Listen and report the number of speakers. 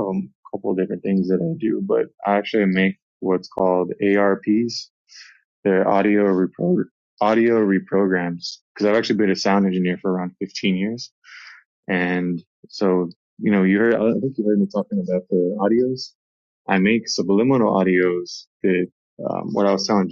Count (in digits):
1